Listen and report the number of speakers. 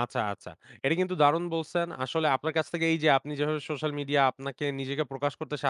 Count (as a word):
one